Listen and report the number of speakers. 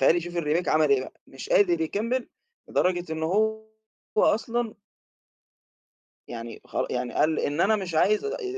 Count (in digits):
1